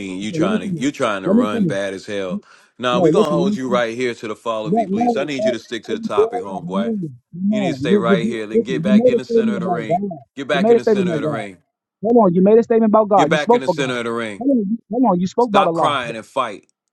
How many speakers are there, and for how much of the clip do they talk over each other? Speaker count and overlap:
2, about 49%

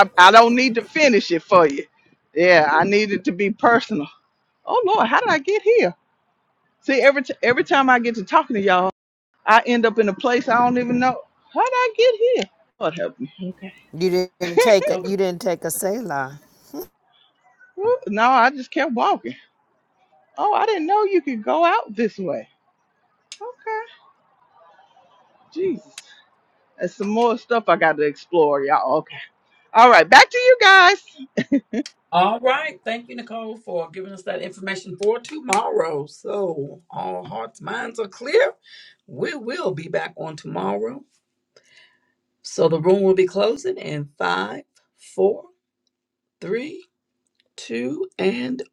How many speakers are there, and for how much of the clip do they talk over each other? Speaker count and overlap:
3, about 1%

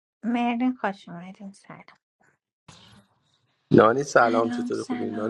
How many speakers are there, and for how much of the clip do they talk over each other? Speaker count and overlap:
2, about 20%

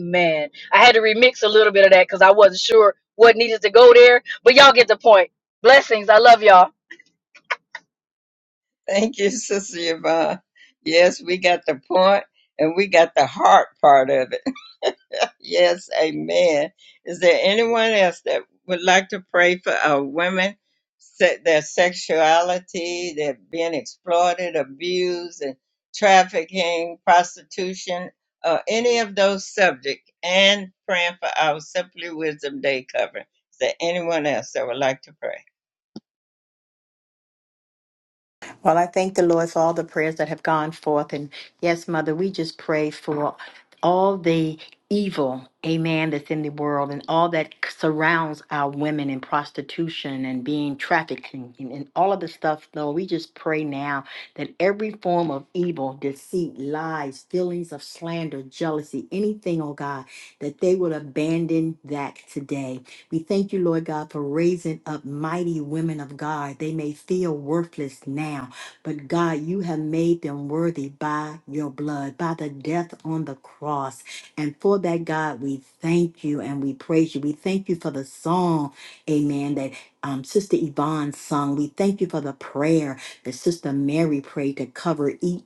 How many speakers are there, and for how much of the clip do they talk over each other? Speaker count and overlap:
3, no overlap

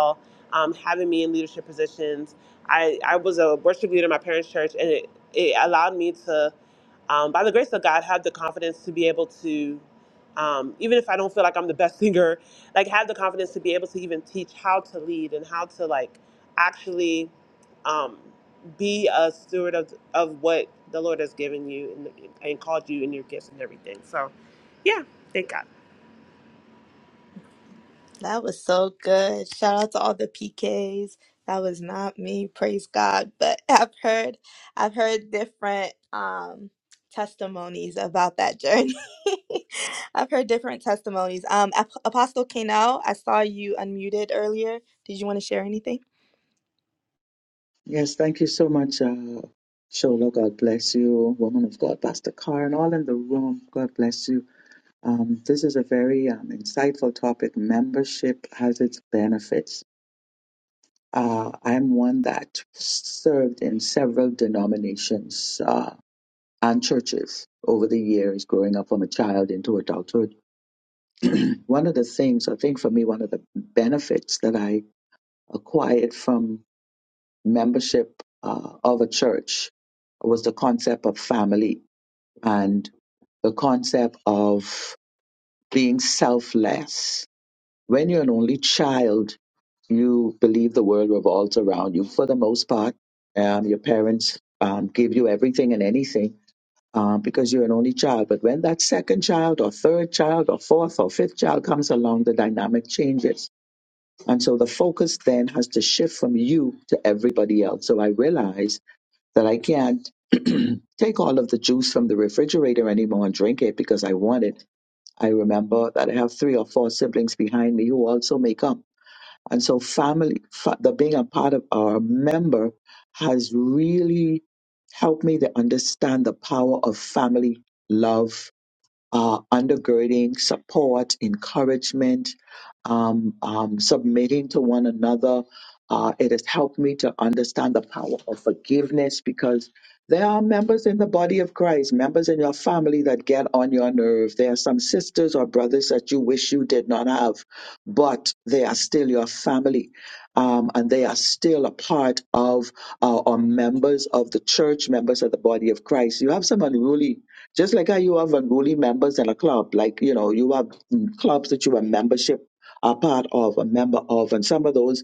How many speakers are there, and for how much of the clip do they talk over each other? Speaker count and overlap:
3, no overlap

